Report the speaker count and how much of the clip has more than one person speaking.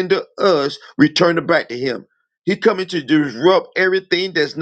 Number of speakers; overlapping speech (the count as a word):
one, no overlap